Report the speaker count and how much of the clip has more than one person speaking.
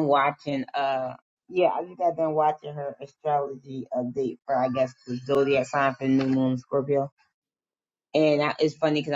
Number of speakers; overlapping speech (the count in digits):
1, no overlap